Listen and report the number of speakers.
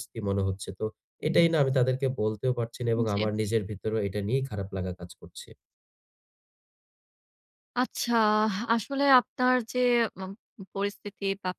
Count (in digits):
2